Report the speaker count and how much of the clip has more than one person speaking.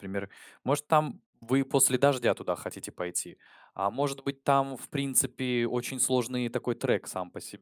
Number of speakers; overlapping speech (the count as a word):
one, no overlap